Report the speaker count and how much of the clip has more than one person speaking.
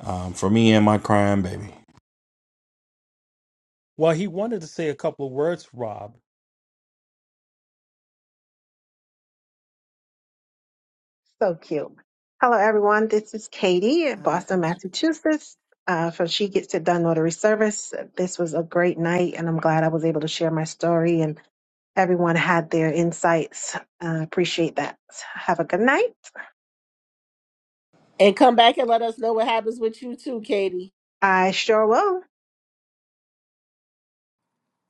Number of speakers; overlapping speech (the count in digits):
4, no overlap